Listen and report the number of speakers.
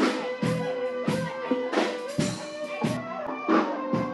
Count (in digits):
0